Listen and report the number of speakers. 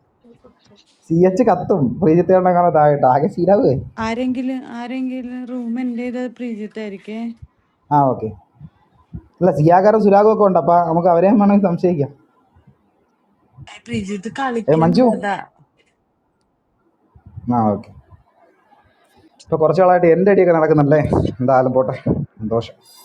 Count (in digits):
2